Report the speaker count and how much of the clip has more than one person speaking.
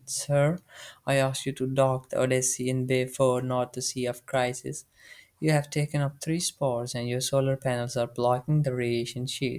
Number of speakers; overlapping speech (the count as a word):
one, no overlap